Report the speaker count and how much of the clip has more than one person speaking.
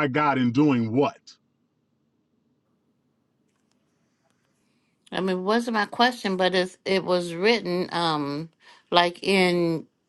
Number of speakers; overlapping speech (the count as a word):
two, no overlap